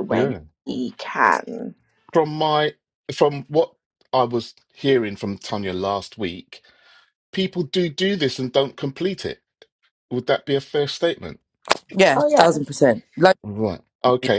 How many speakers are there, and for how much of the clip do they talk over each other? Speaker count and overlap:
three, about 4%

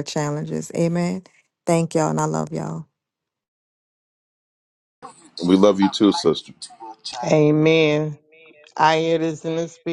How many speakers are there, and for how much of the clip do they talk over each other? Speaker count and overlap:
three, no overlap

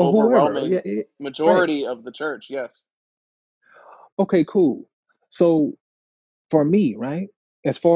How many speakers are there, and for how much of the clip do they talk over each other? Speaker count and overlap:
two, about 13%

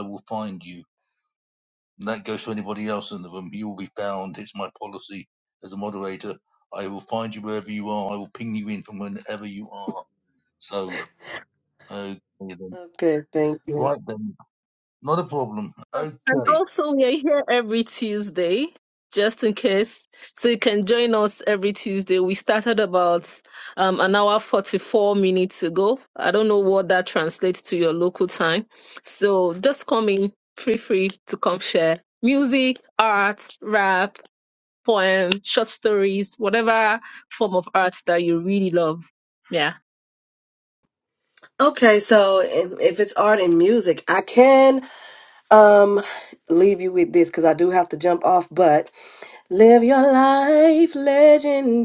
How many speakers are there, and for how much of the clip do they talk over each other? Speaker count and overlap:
three, about 2%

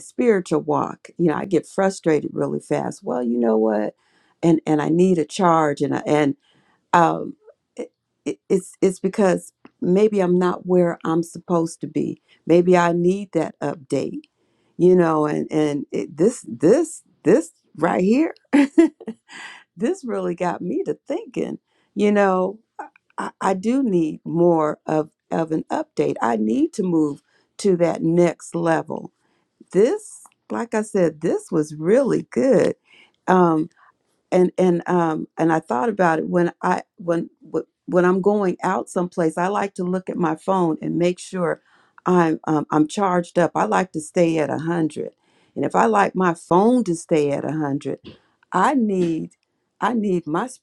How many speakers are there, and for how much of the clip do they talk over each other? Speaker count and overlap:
one, no overlap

